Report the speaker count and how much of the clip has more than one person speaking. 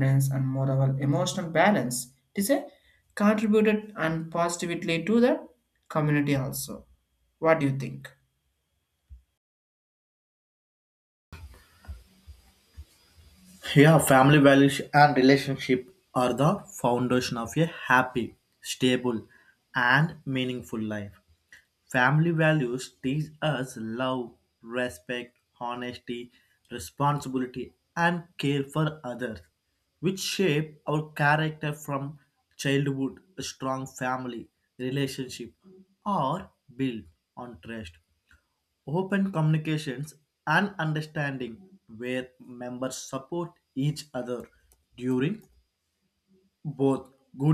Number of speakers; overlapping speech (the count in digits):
2, no overlap